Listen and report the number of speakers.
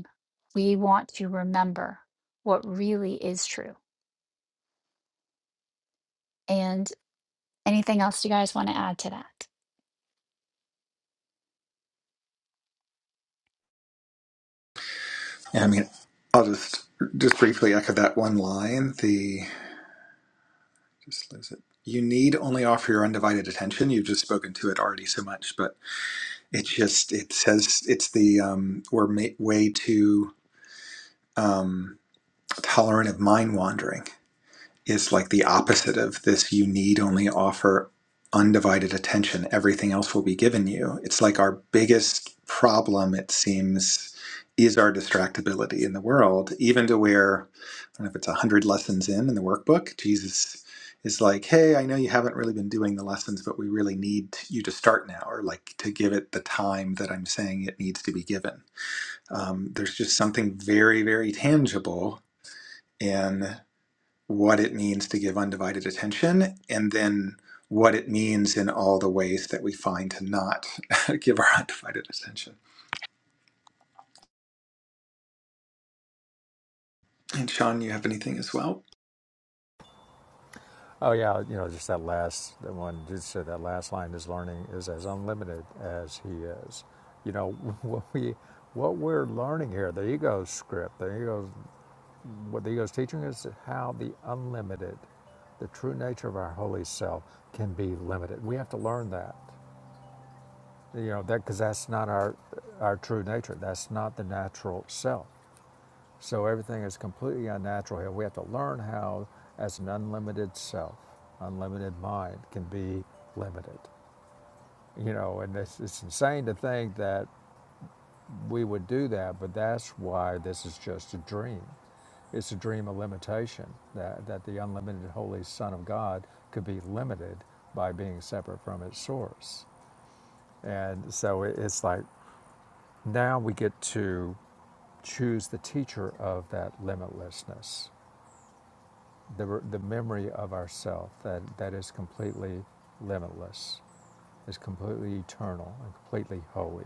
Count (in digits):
3